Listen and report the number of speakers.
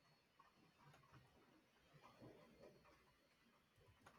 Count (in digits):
0